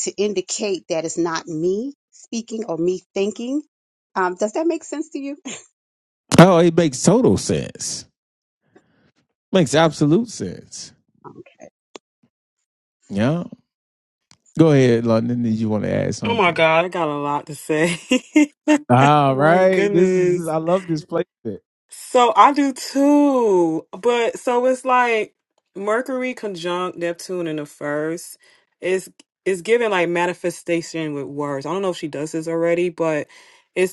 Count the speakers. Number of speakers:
three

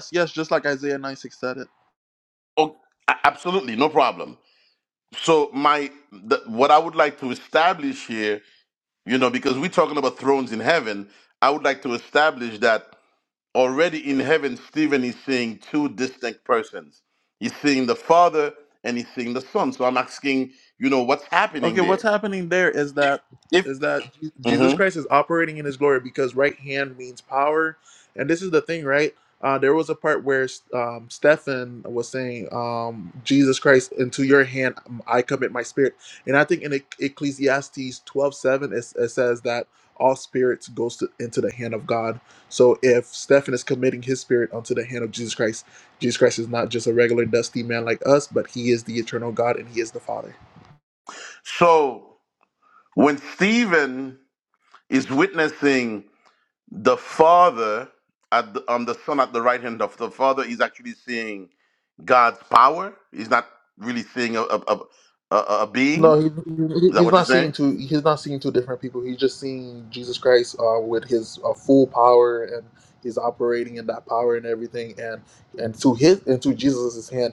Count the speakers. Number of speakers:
two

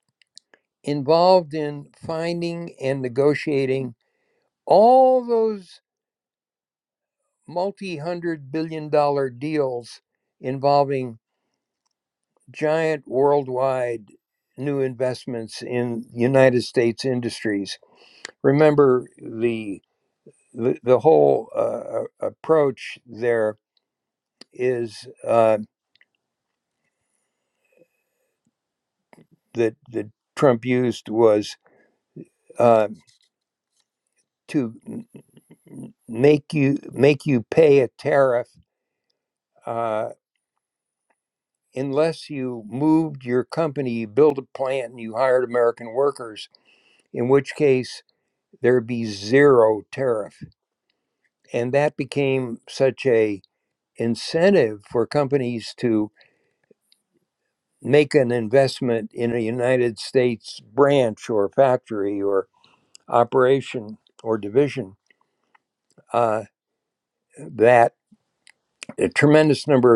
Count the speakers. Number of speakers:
one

